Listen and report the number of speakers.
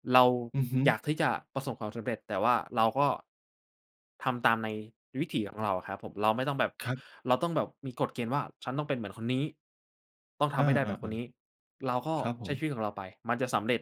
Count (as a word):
two